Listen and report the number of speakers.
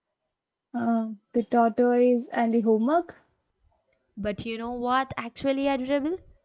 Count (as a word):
two